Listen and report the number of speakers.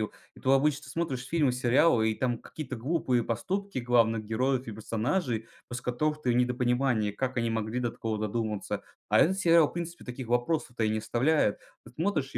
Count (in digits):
1